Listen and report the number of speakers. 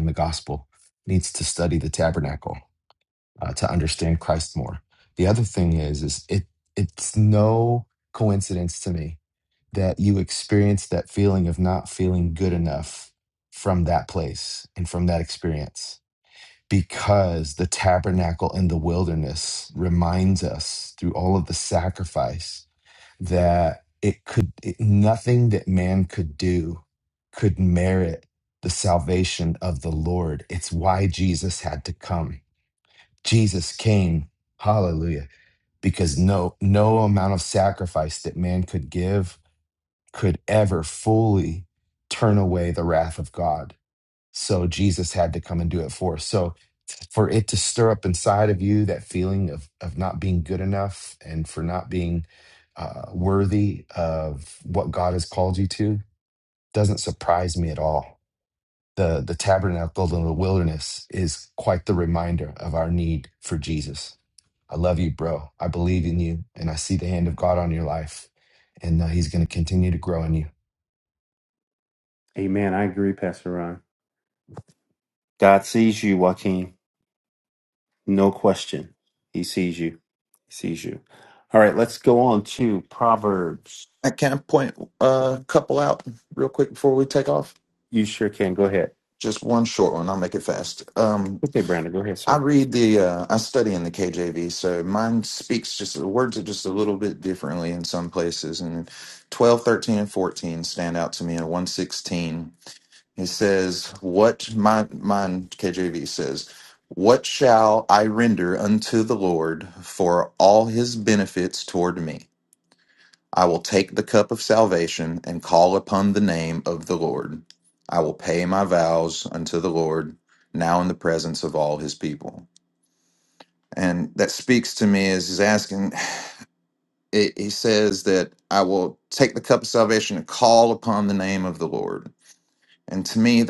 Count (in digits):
3